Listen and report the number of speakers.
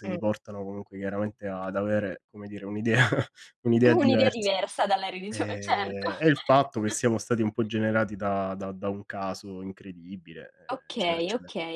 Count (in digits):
2